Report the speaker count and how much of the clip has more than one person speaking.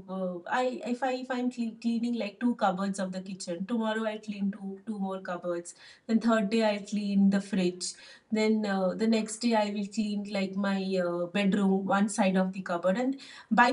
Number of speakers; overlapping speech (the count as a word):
one, no overlap